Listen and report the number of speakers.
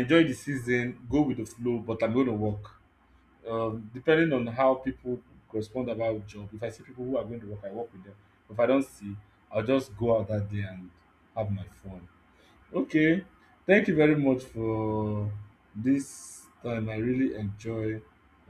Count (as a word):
one